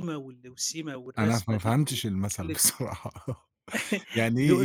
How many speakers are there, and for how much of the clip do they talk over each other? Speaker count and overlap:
two, about 21%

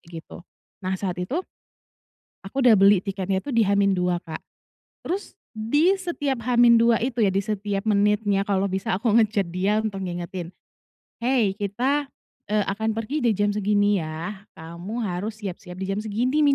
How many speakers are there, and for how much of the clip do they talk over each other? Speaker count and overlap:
one, no overlap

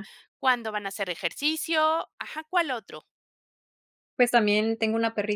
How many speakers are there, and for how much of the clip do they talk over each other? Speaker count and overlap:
two, no overlap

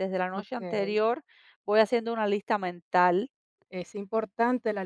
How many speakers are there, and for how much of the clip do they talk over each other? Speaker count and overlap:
two, about 13%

